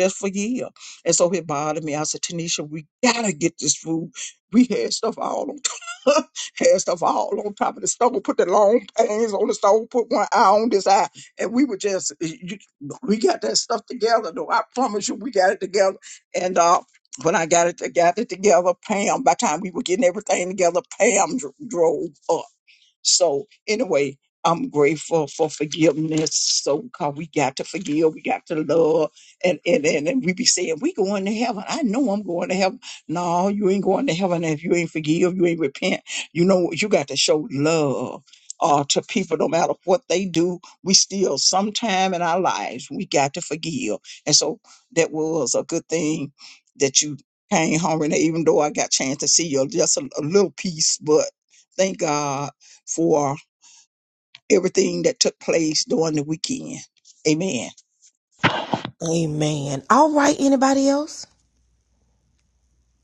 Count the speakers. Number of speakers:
2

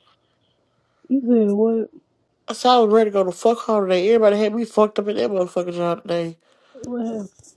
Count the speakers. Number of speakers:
2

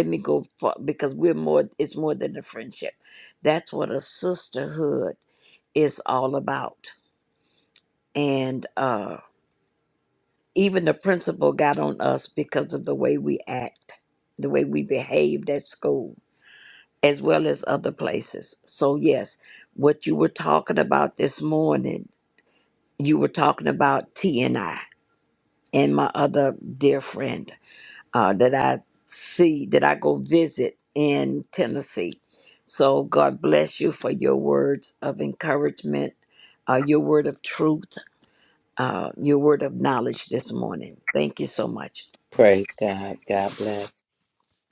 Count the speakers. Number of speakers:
2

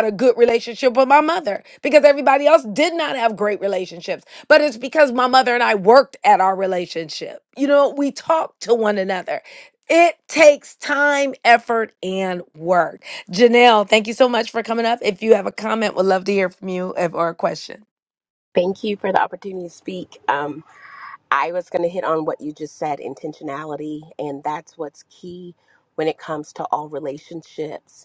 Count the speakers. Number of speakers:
2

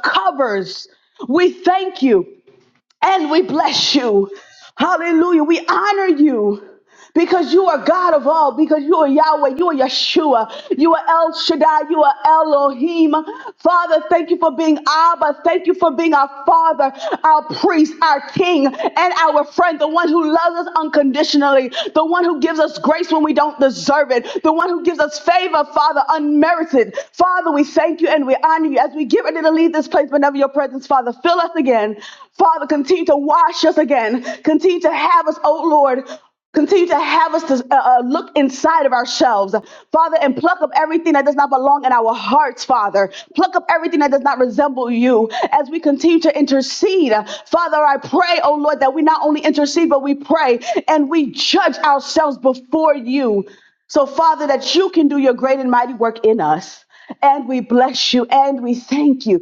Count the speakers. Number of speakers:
1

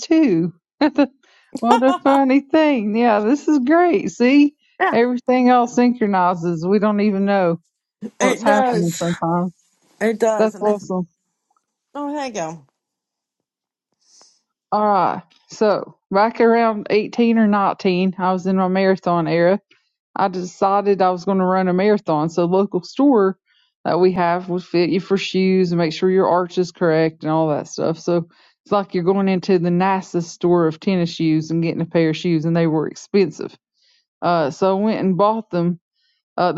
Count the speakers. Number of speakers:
2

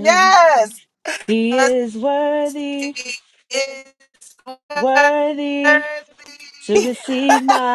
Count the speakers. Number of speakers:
2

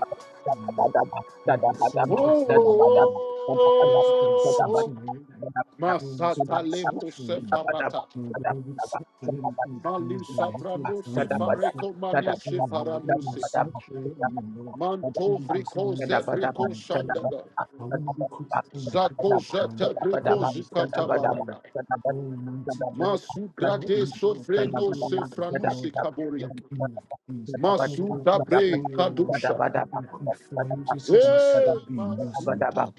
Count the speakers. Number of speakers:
3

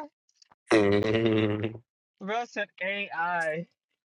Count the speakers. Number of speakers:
2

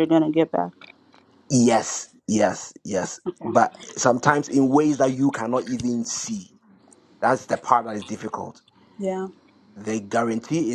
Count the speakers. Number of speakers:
2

